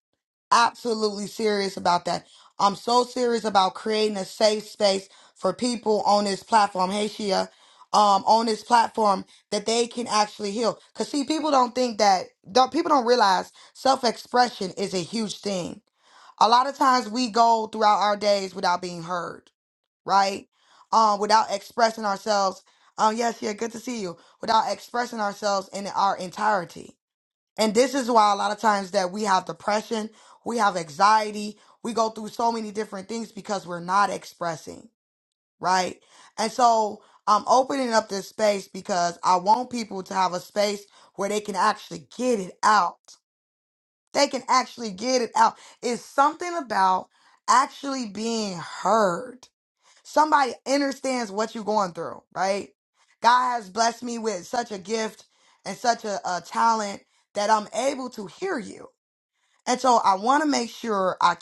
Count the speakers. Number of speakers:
1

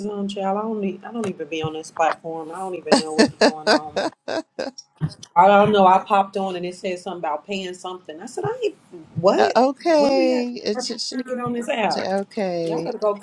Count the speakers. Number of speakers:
2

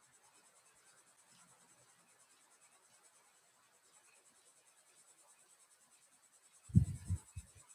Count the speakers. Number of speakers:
0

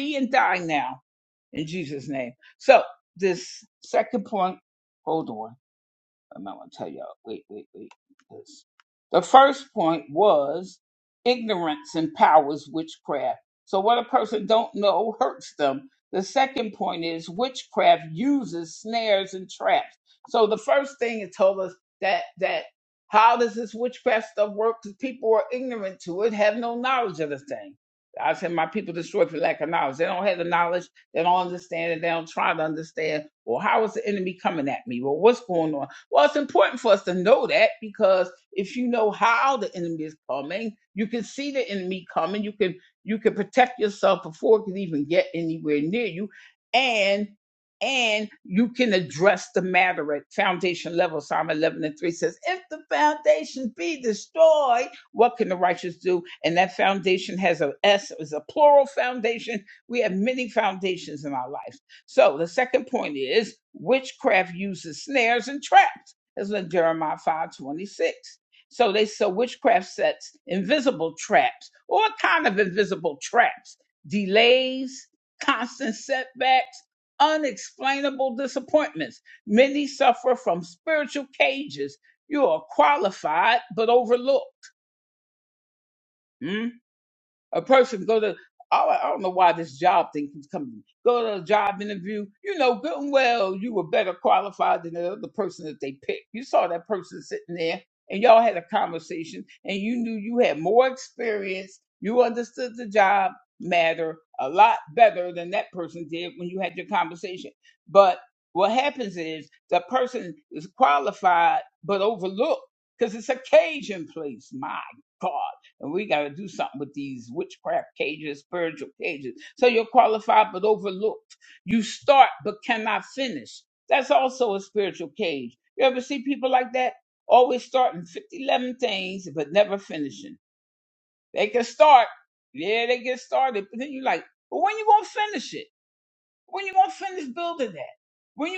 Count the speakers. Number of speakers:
1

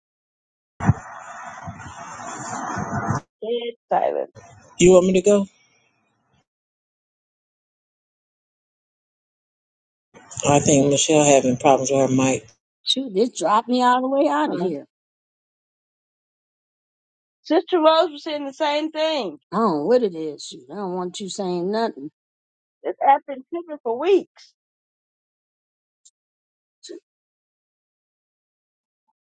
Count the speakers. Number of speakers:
3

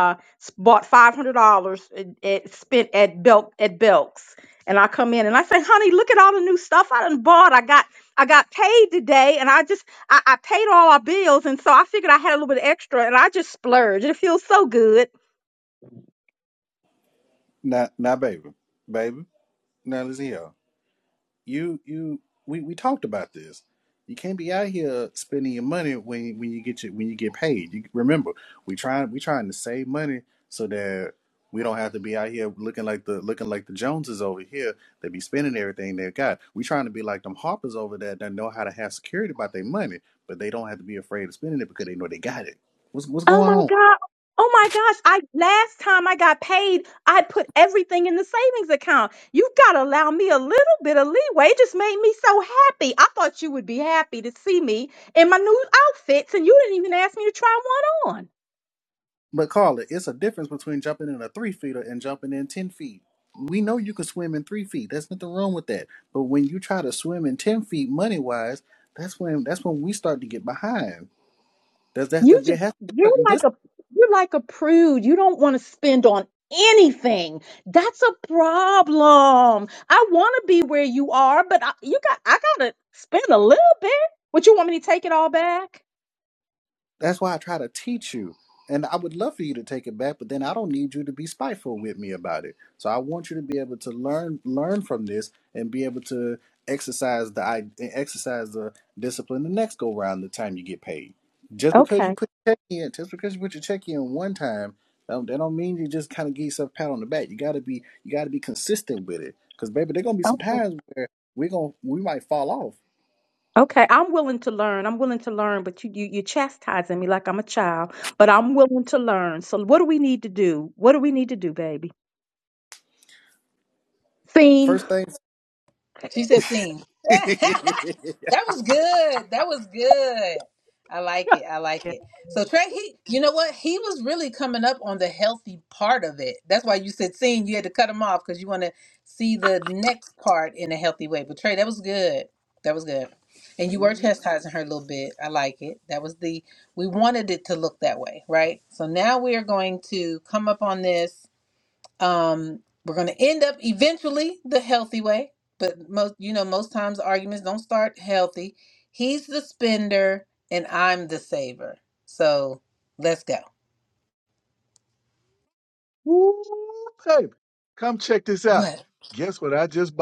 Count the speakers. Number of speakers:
4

